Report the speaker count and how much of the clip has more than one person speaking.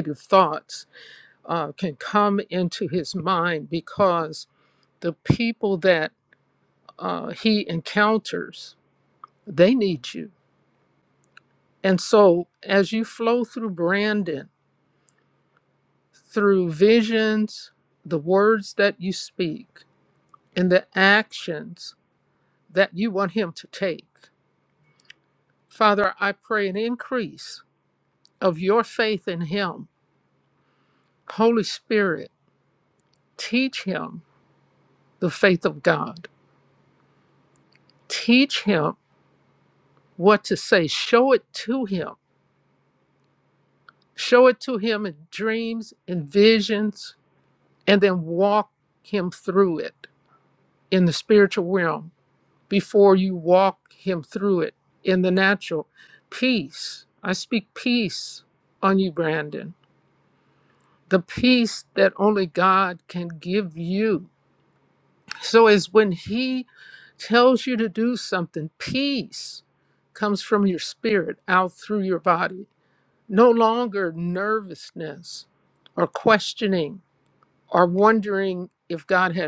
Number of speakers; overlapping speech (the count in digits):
1, no overlap